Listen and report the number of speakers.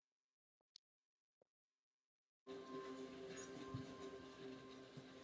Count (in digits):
0